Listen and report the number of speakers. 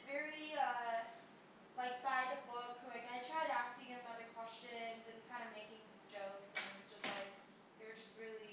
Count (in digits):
1